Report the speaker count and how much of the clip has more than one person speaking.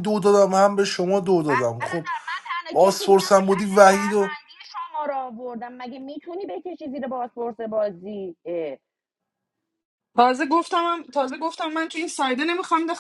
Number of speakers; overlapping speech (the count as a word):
three, about 16%